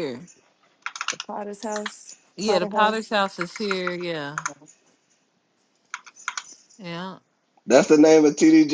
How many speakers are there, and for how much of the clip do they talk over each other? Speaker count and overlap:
3, about 5%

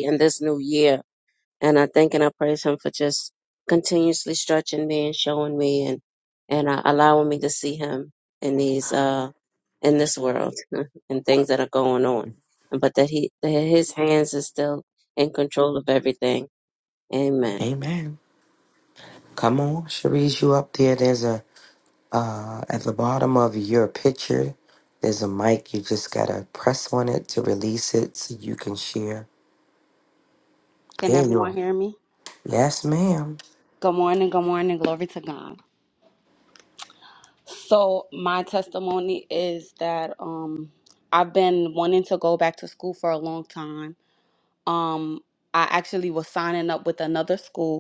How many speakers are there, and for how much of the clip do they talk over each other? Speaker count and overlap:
3, about 1%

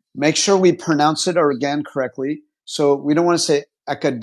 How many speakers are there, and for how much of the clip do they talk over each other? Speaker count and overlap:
1, no overlap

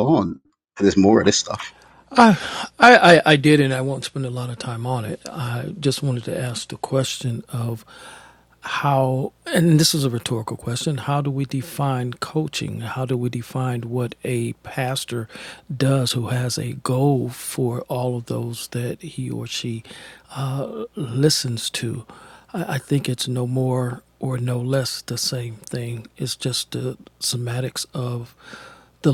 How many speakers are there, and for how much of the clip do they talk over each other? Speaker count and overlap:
2, no overlap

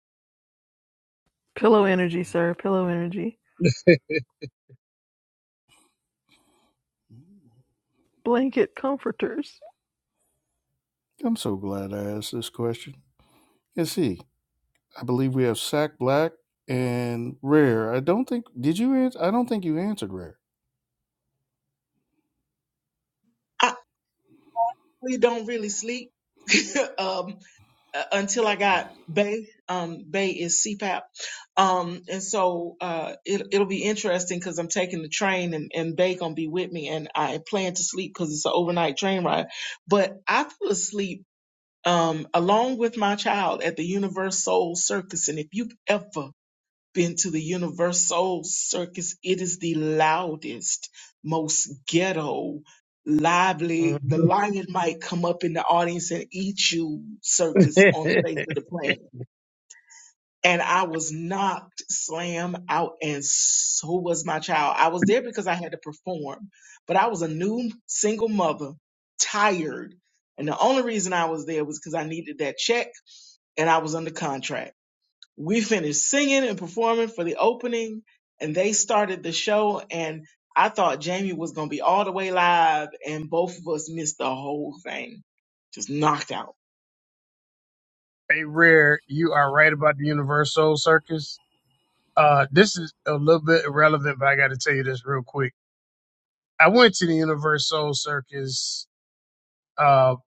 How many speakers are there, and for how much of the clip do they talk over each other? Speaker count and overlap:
4, about 1%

